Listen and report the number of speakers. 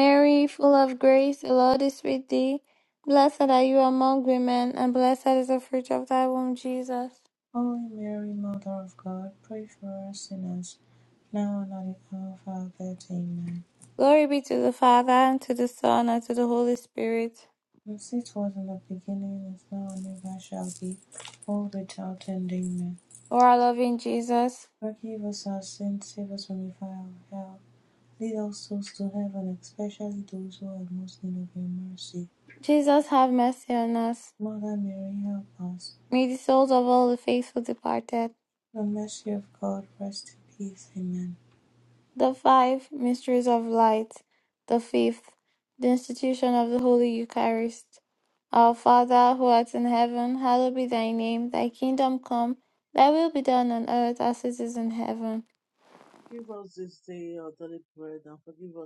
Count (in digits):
3